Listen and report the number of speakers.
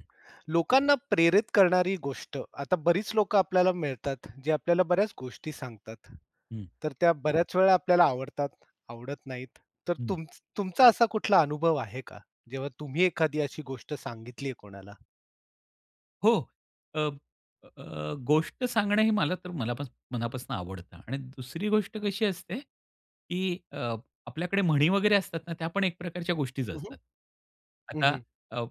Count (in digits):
2